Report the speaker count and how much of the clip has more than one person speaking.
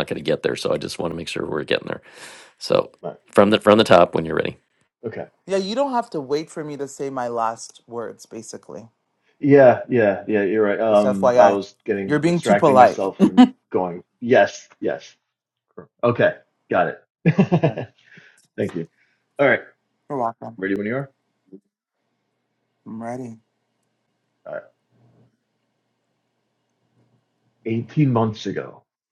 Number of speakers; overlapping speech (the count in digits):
3, about 5%